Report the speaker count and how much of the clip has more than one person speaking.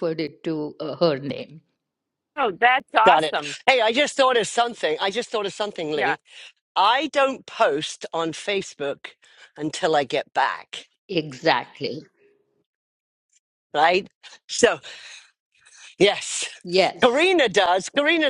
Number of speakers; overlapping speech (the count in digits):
3, about 4%